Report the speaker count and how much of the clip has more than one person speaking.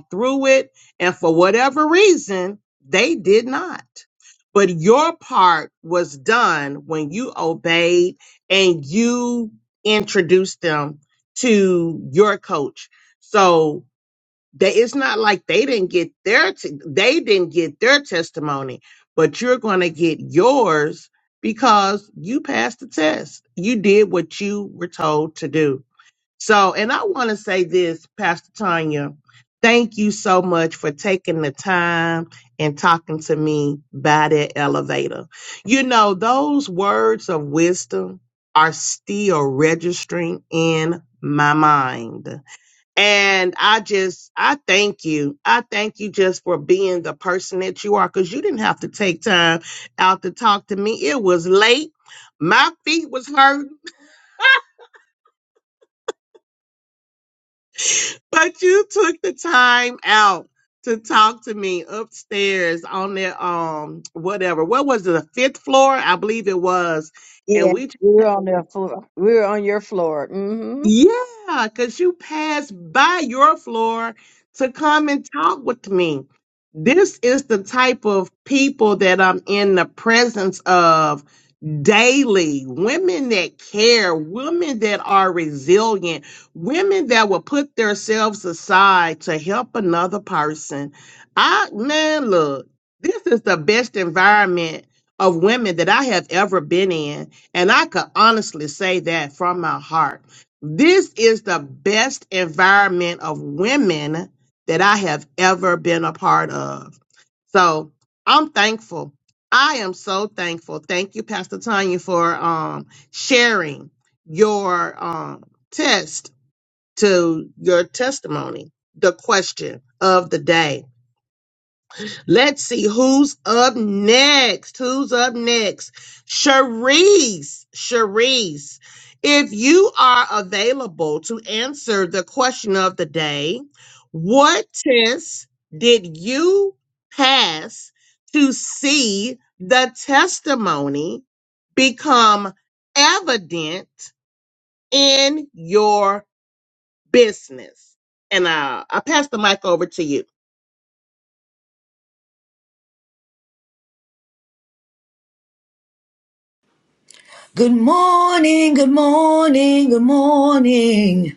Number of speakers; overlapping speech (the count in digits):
3, under 1%